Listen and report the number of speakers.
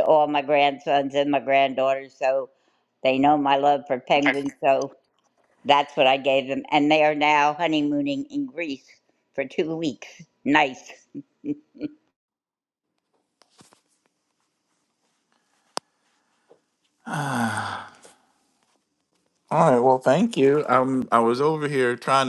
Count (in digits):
2